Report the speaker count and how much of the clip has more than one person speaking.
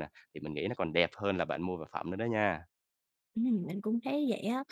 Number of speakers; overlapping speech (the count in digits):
2, no overlap